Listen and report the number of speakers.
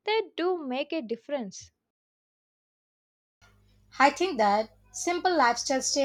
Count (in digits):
2